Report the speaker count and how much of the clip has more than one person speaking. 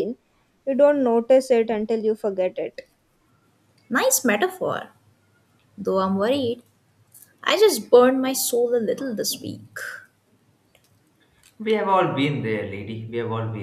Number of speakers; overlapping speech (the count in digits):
3, no overlap